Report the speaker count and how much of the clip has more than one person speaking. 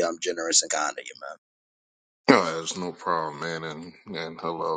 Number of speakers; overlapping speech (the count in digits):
2, no overlap